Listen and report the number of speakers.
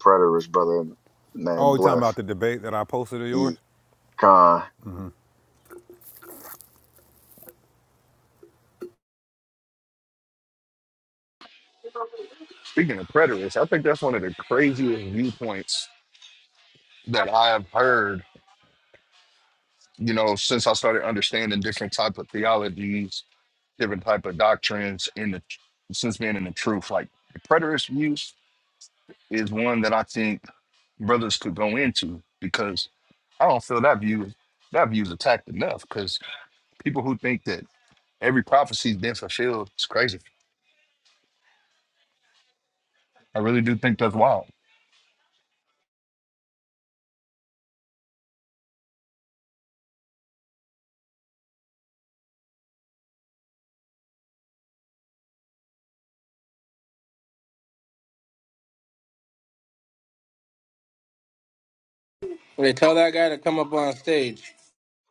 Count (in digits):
4